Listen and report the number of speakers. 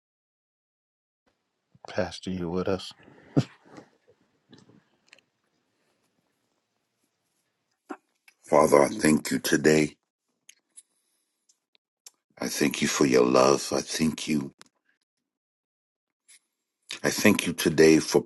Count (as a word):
two